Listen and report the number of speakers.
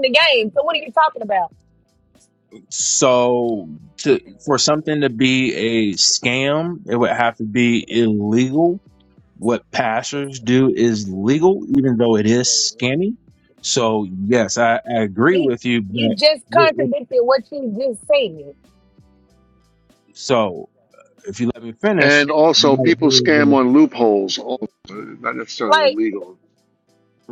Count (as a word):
three